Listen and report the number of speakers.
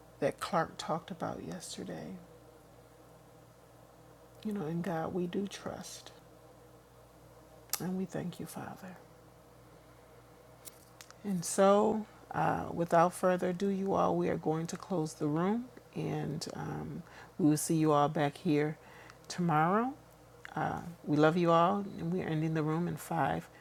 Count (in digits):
1